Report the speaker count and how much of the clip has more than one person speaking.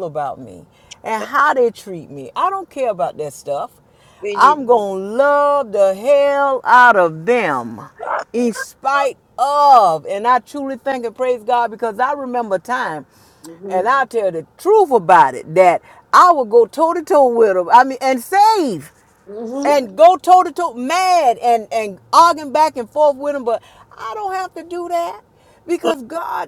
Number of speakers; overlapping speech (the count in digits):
2, about 2%